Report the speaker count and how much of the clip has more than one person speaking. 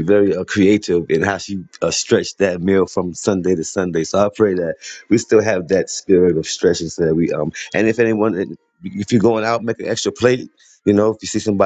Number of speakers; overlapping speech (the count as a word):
one, no overlap